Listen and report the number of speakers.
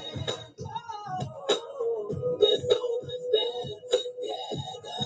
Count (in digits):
0